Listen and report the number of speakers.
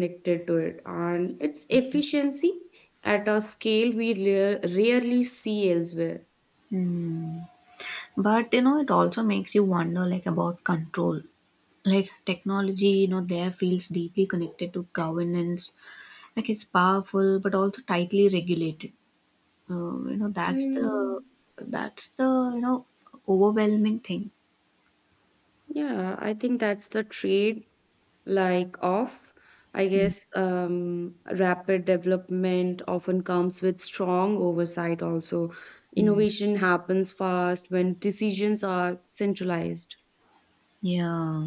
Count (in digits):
2